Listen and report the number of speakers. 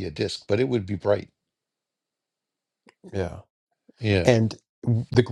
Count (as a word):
two